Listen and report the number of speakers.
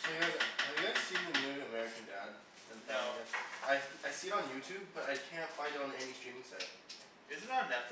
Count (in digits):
2